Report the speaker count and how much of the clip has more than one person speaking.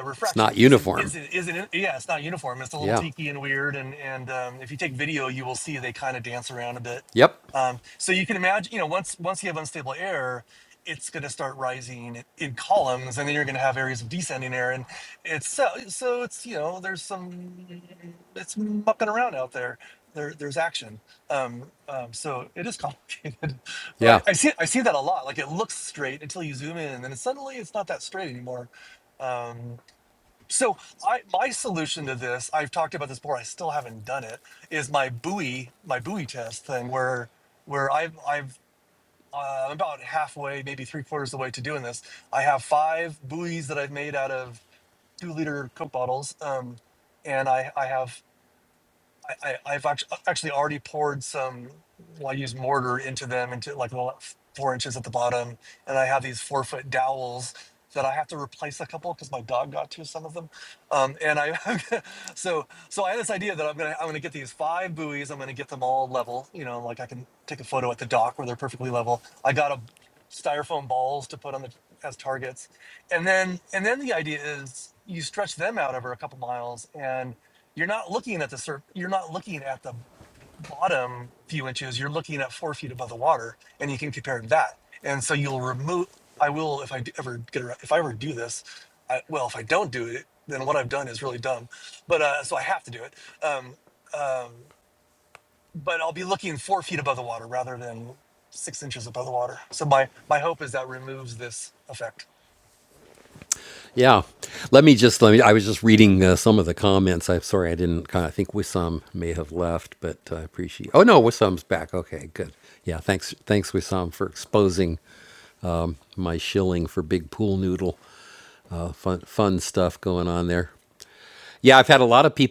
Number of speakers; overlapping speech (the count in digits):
2, about 1%